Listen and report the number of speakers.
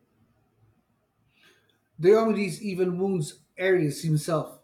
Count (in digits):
1